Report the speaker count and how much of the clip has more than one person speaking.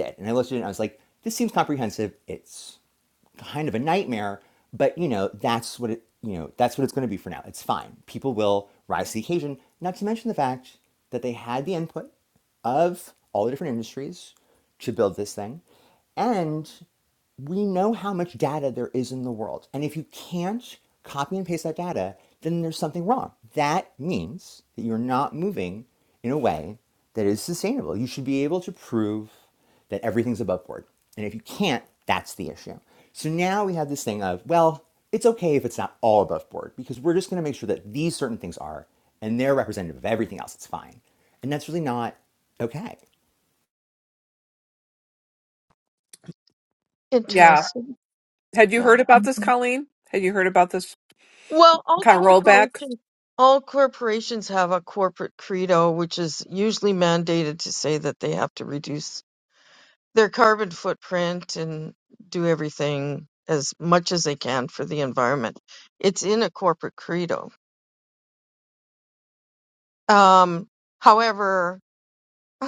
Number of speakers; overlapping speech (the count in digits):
3, about 2%